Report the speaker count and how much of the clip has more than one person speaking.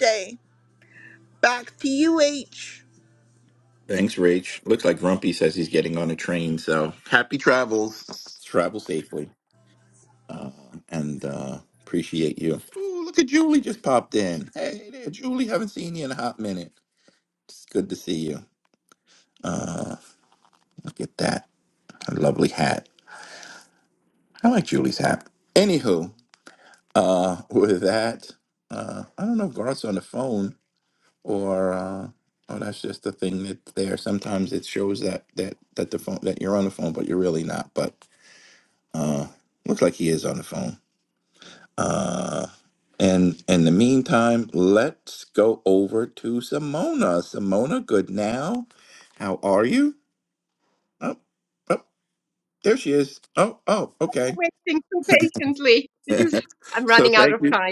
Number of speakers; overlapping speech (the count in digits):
3, about 1%